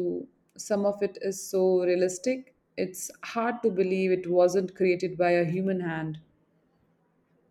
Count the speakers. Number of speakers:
1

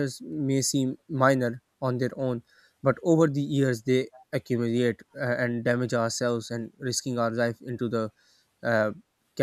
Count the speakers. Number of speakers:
1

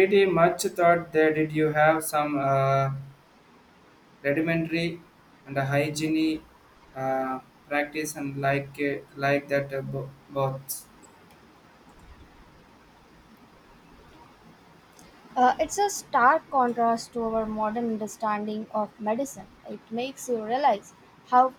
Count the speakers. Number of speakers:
2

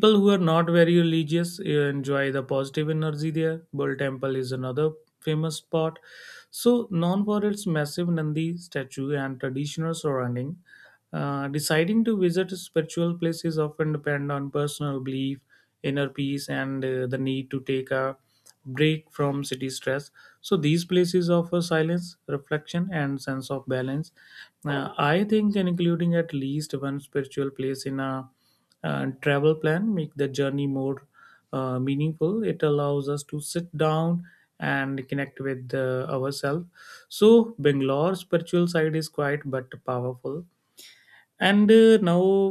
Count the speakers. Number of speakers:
1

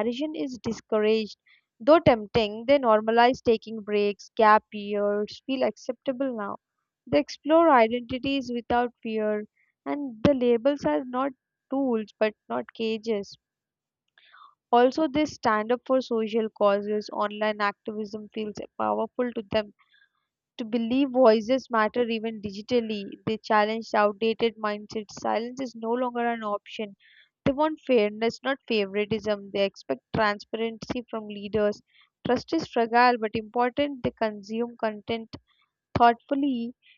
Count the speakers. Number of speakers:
1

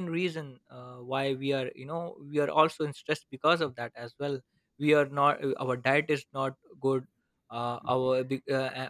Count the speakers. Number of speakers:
1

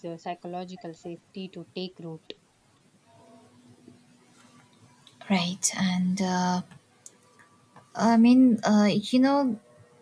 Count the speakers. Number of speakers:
2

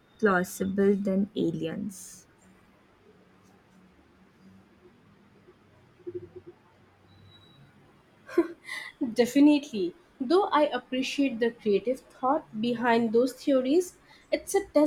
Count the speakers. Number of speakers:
2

